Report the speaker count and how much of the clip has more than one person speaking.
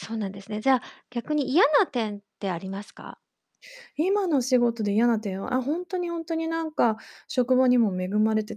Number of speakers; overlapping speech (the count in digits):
2, no overlap